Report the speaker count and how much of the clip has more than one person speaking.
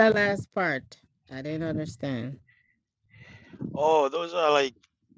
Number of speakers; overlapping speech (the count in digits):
2, no overlap